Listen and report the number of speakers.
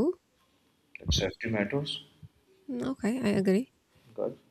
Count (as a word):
two